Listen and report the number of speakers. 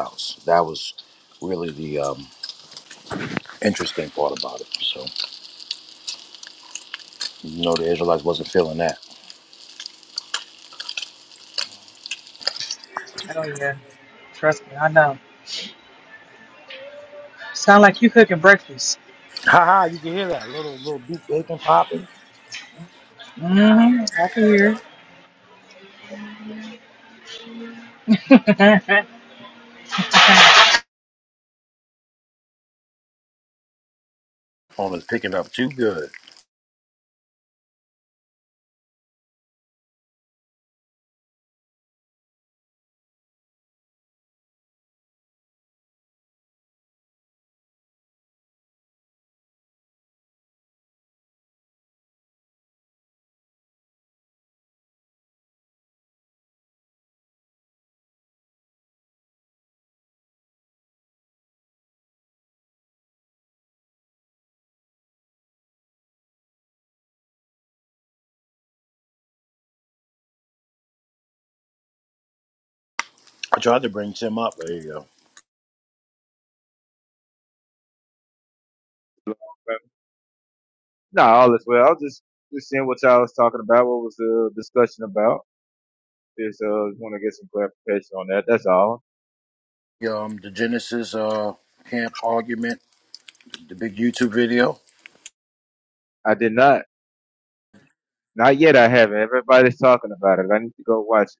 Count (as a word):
three